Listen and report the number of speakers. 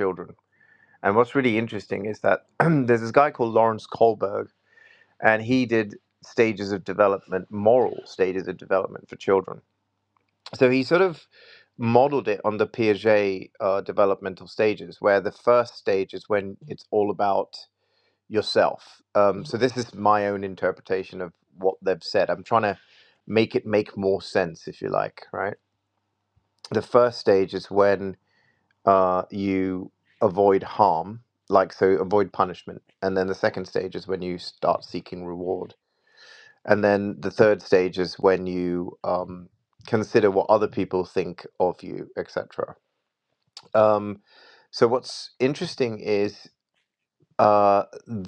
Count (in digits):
1